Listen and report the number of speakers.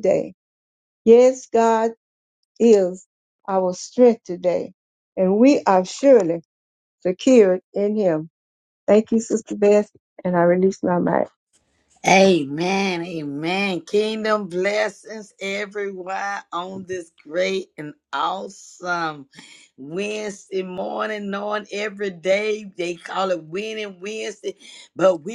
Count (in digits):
2